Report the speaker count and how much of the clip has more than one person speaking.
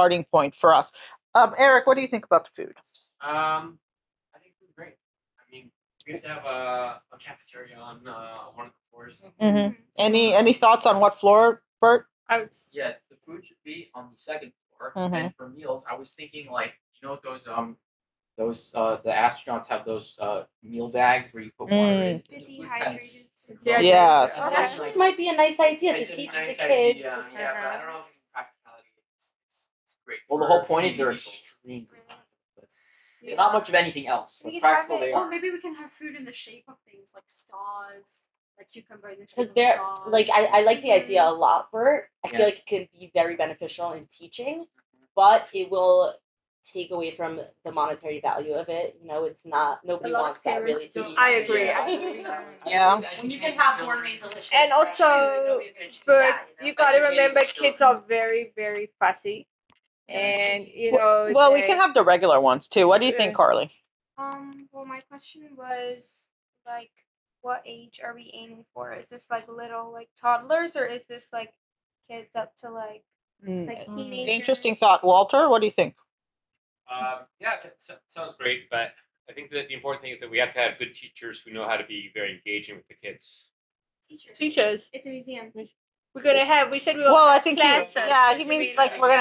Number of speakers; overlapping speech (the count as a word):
eight, about 27%